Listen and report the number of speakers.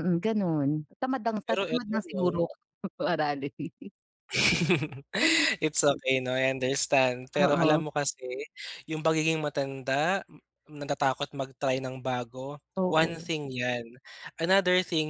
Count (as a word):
two